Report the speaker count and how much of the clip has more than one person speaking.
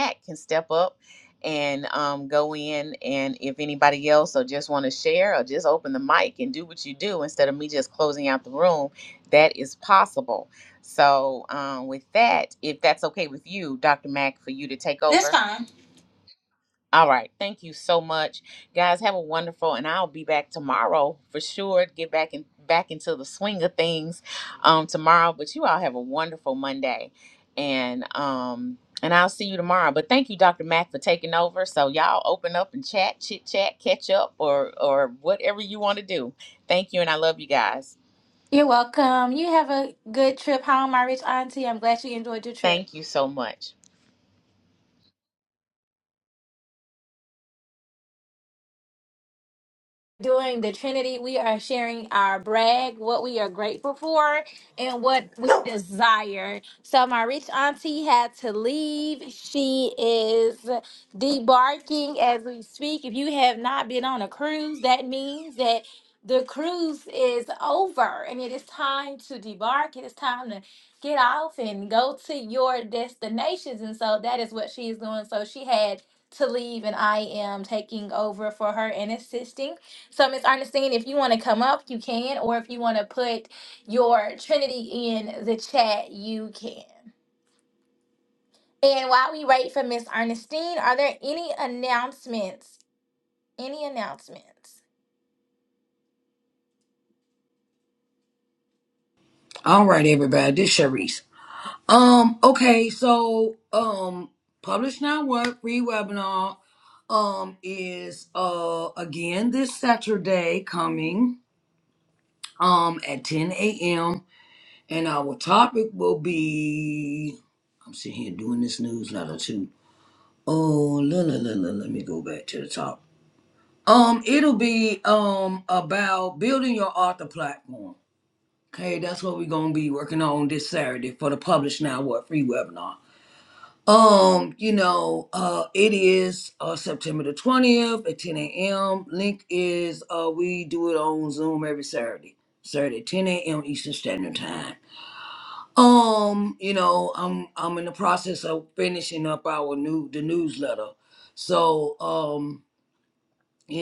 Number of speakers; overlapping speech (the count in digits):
3, under 1%